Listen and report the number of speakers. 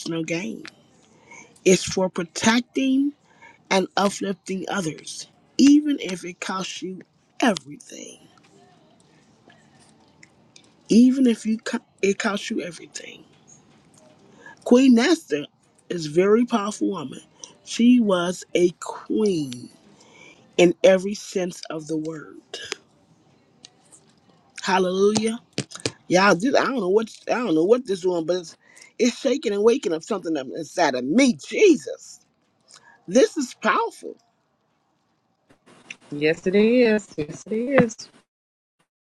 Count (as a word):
two